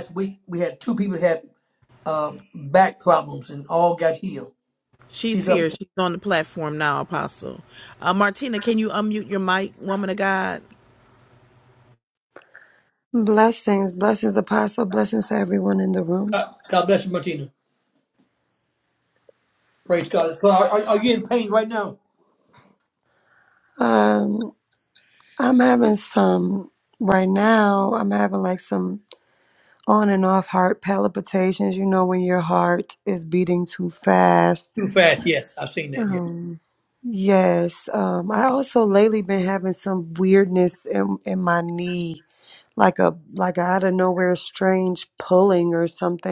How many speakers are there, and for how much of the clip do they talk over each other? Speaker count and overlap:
3, about 2%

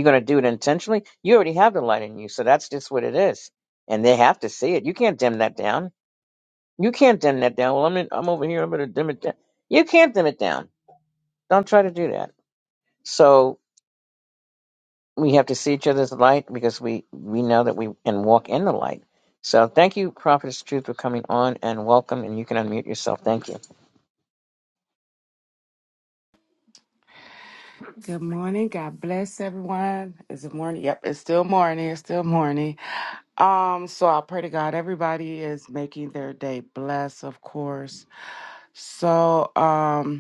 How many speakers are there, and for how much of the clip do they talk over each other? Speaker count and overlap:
2, no overlap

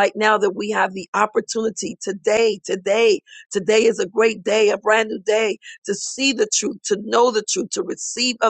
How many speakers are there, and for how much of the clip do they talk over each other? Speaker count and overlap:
1, no overlap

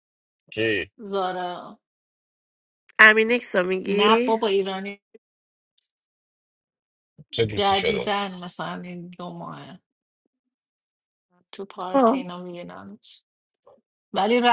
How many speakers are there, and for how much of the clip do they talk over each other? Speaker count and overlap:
3, about 9%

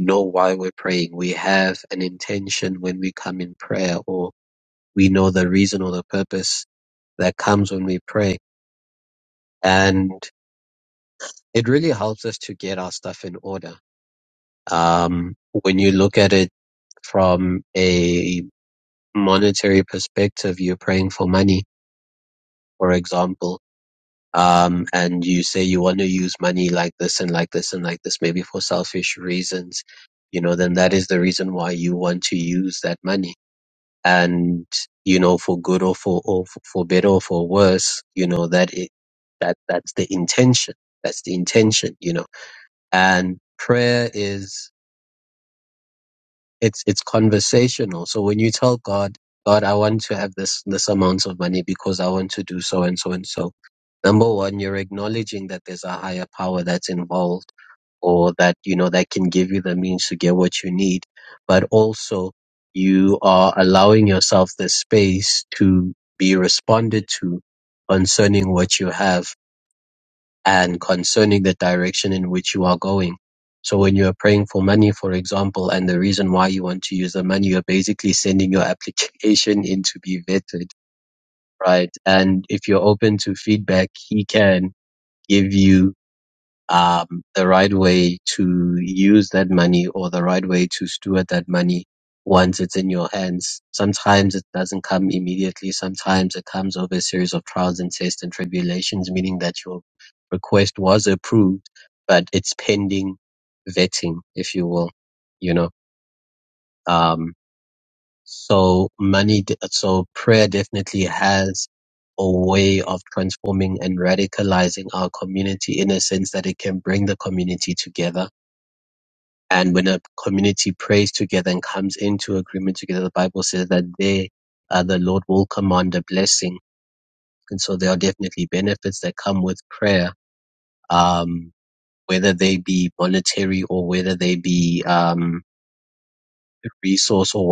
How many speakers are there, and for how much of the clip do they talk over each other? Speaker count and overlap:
1, no overlap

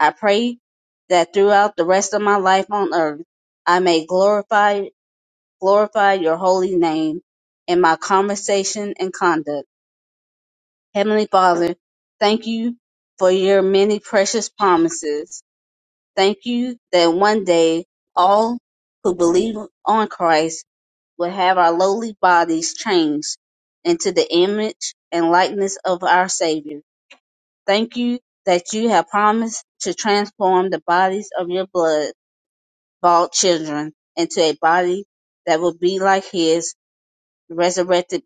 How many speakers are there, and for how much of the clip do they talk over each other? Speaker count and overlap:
1, no overlap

